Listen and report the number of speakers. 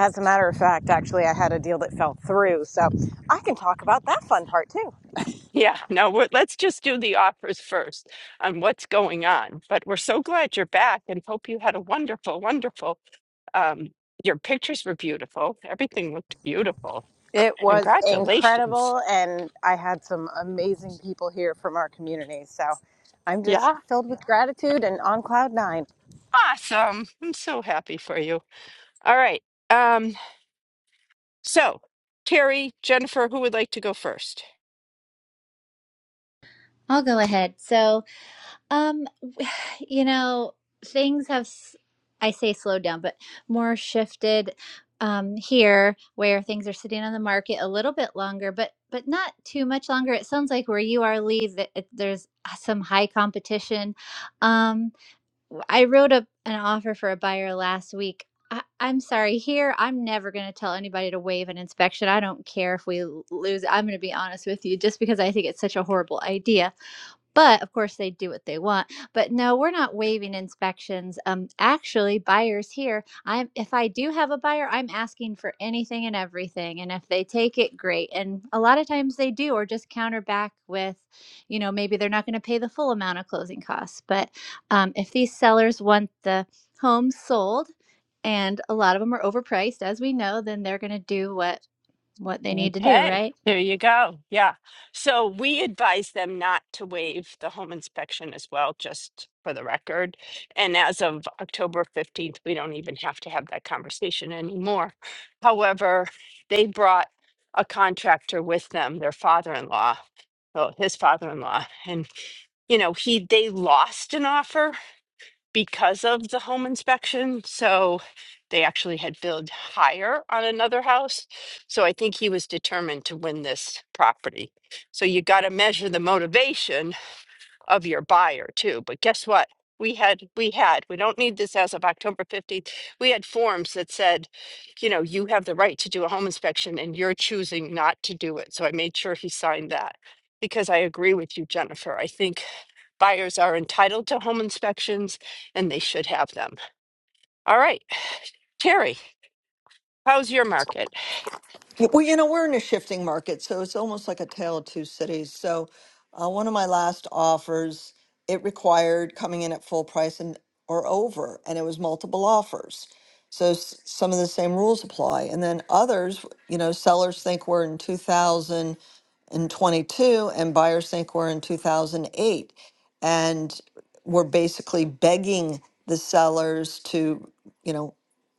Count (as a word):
four